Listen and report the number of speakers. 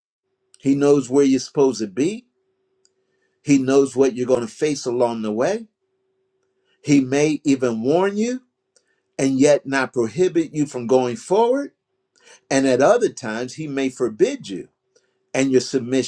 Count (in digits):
1